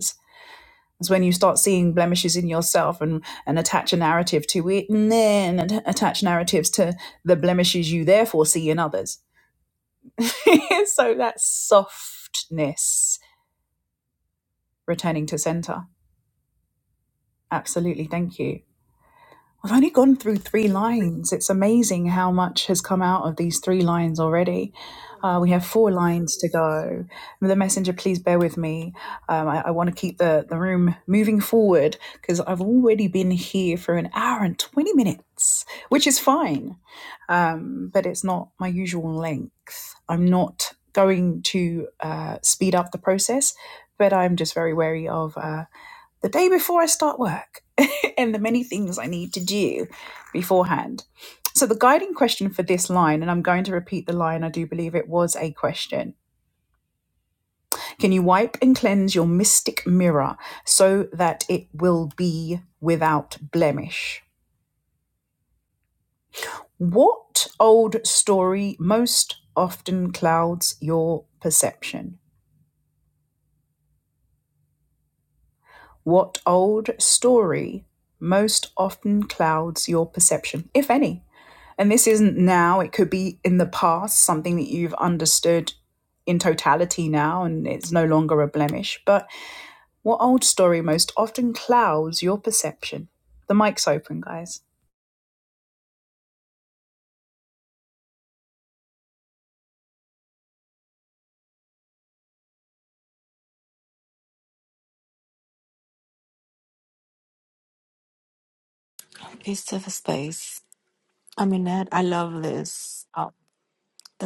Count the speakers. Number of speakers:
2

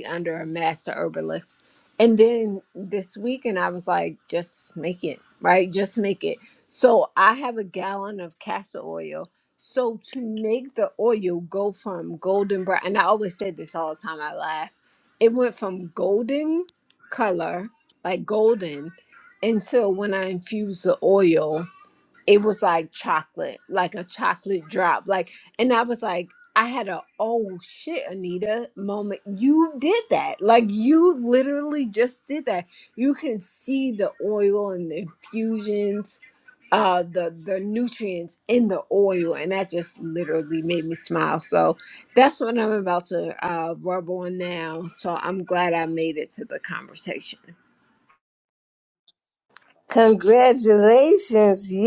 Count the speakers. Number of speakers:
2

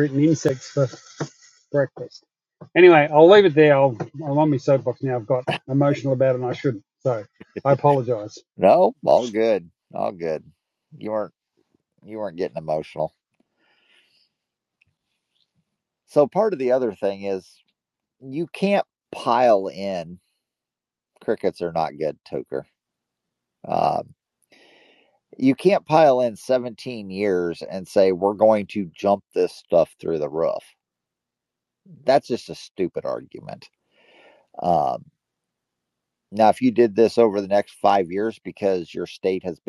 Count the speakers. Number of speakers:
2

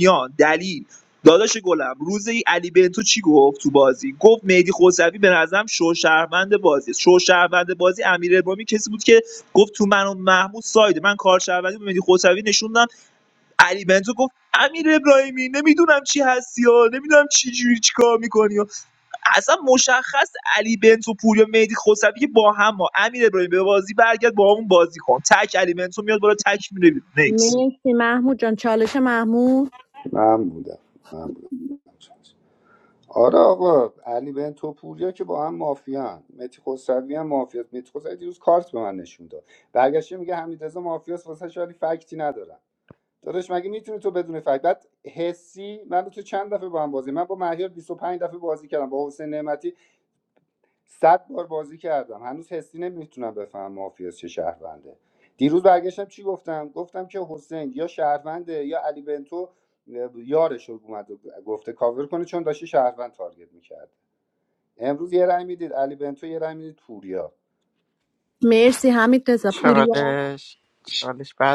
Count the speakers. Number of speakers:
4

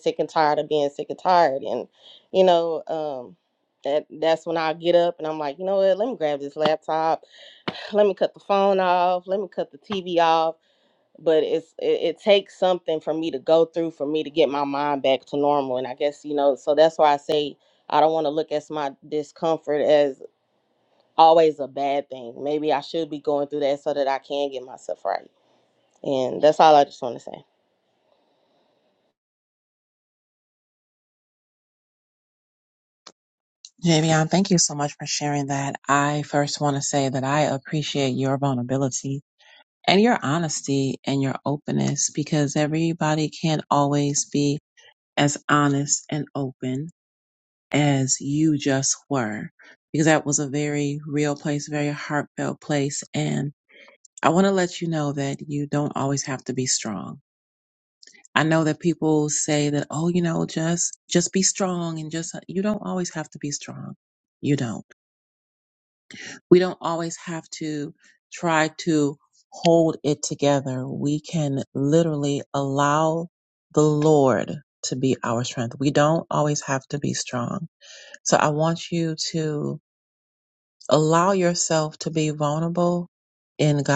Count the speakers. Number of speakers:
2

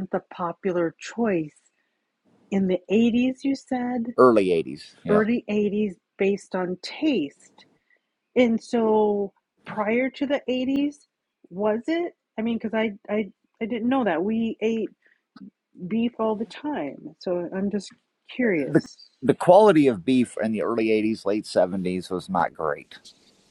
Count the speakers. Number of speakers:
2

